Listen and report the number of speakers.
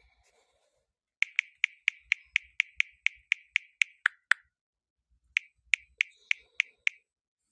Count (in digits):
0